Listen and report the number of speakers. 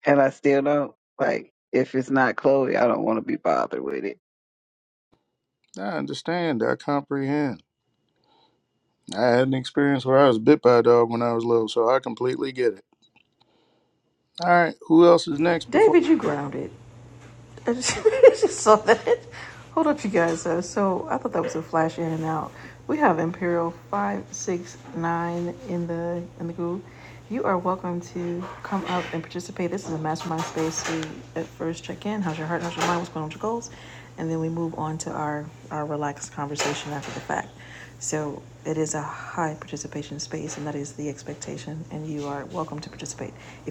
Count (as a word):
three